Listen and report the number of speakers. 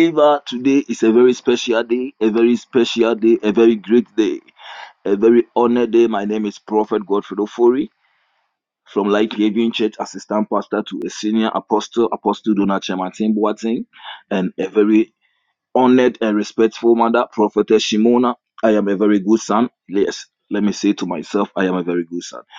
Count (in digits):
1